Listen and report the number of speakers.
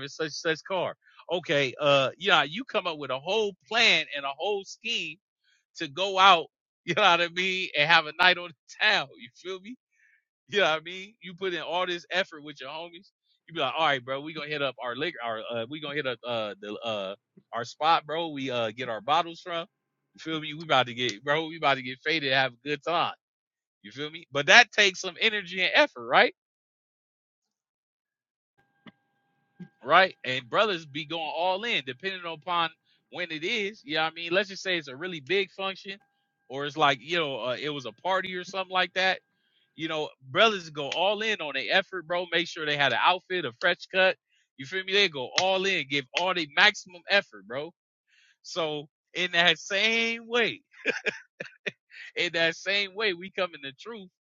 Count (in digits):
1